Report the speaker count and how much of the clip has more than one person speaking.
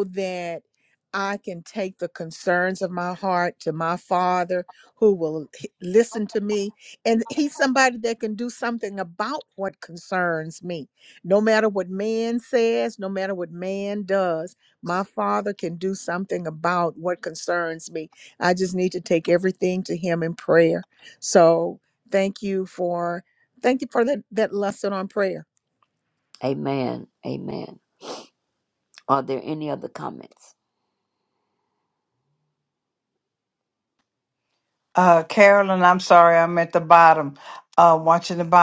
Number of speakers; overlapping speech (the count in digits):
3, no overlap